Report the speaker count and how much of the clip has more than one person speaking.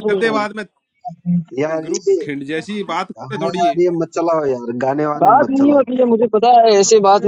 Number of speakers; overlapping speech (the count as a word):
three, about 30%